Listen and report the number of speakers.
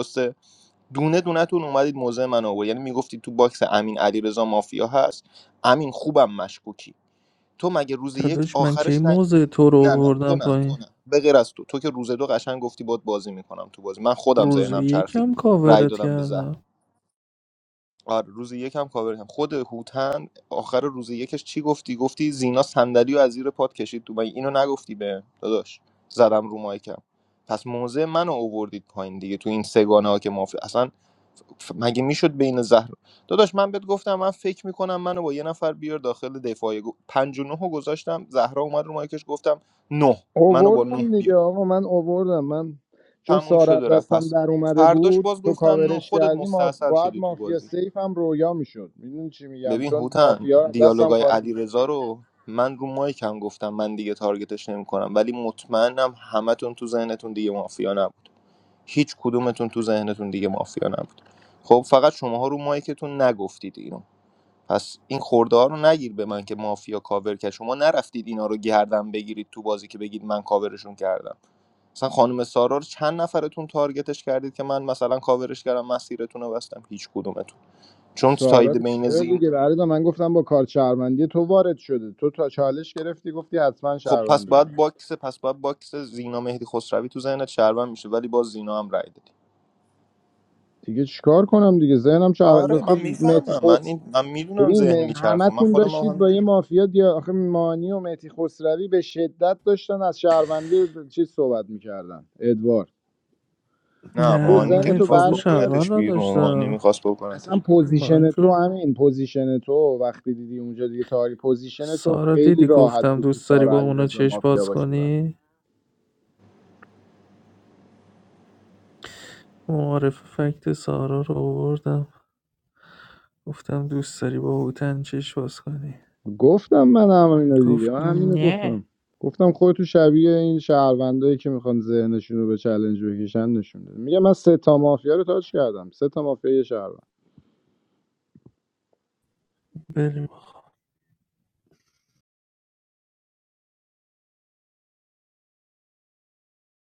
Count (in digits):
3